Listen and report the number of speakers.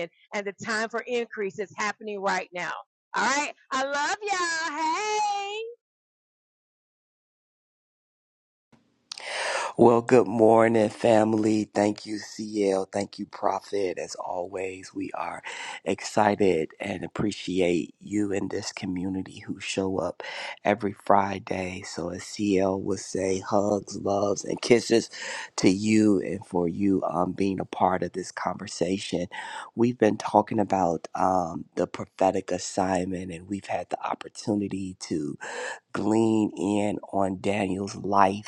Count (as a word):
two